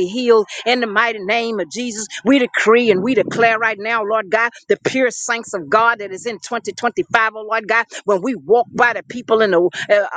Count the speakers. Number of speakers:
one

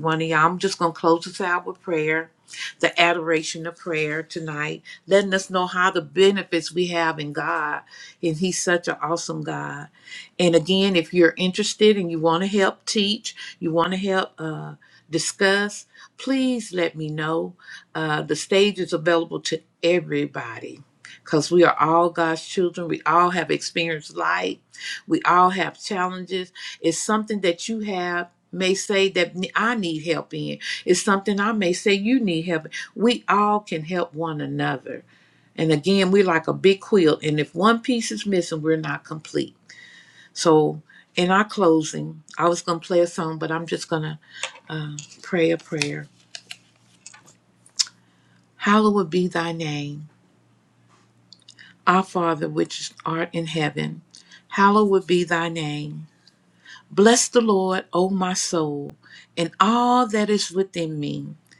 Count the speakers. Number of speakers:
one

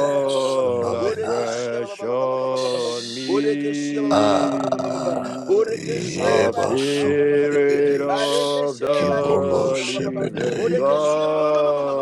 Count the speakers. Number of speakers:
three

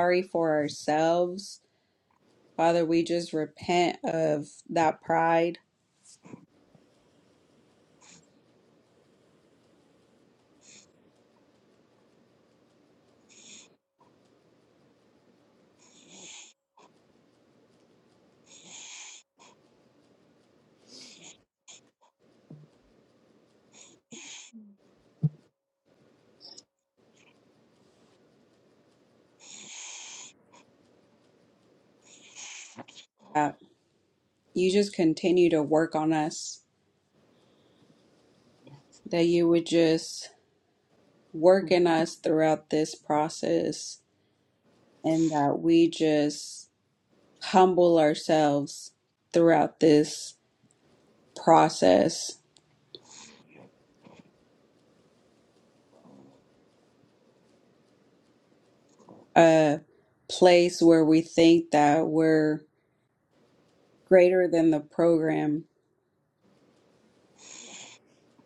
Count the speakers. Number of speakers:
one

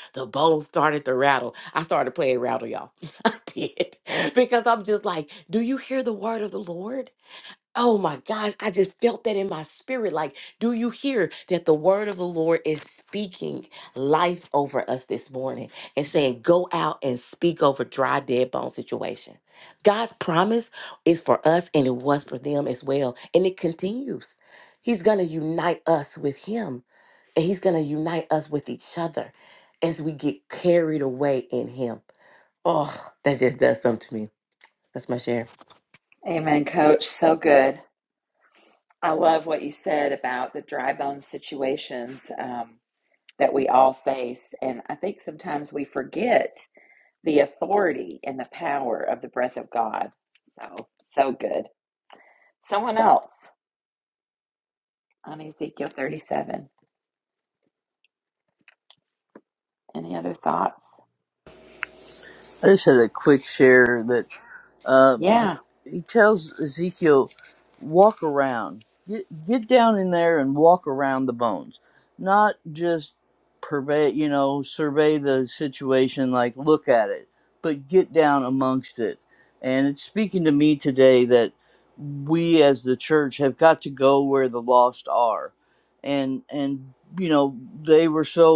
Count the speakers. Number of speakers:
three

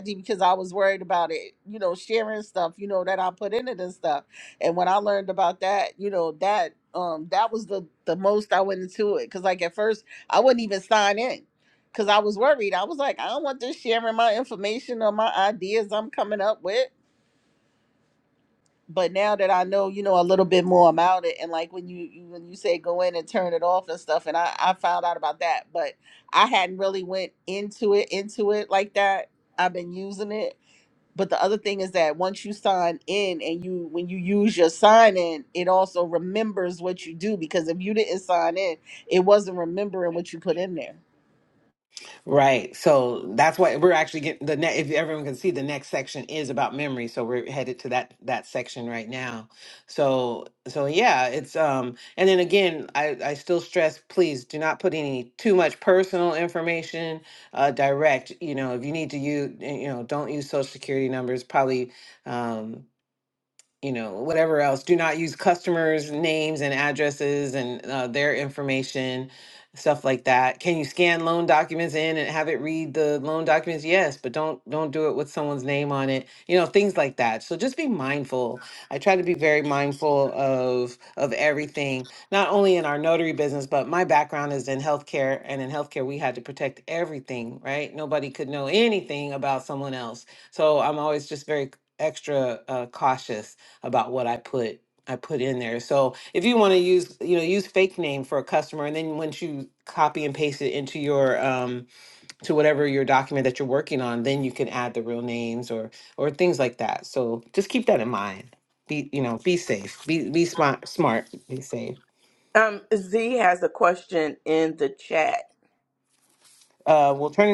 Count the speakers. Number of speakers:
three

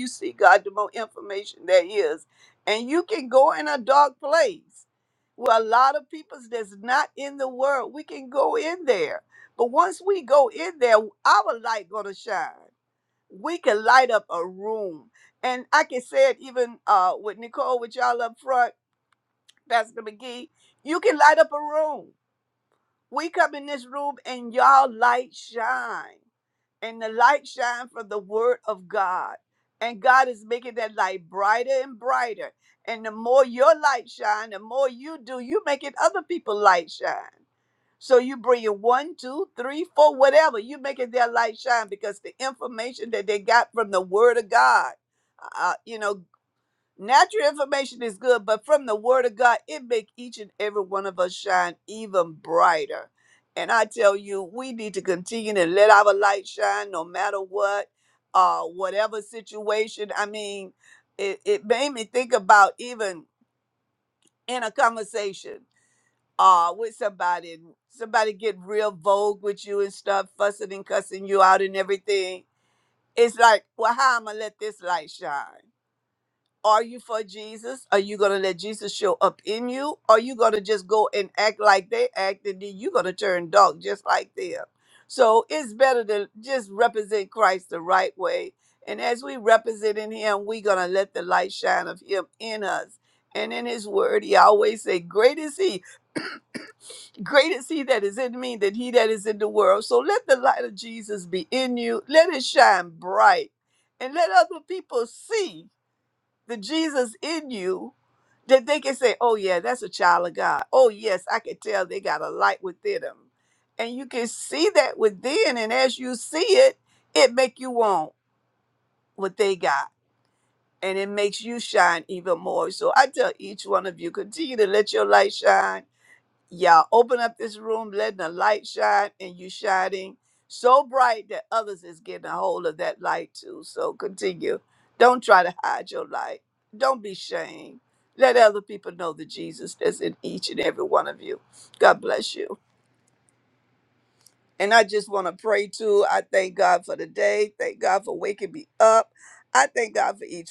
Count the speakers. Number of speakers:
one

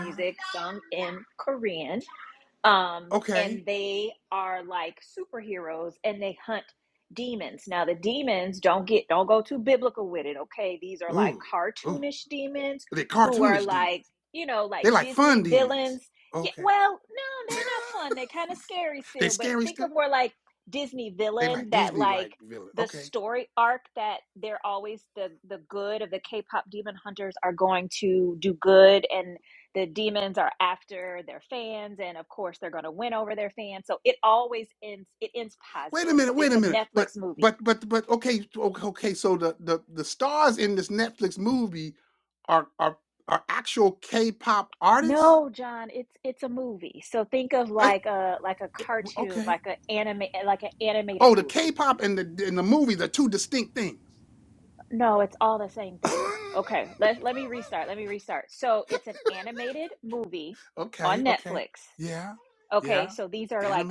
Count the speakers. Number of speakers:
two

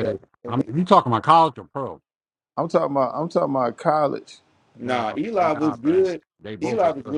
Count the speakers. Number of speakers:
three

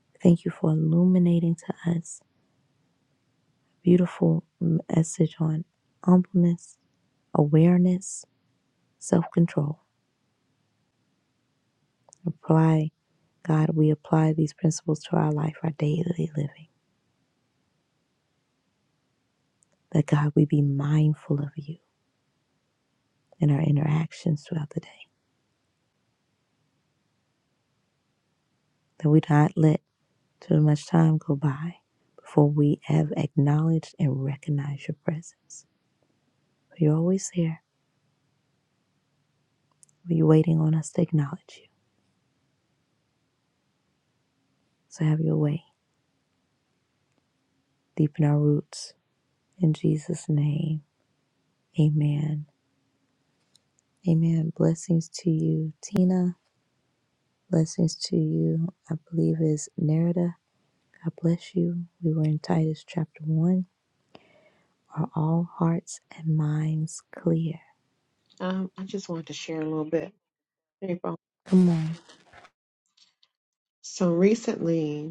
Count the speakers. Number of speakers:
two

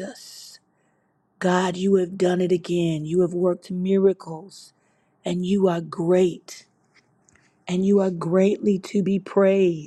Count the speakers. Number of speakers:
one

